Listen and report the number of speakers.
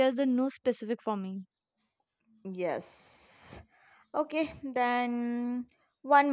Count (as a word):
two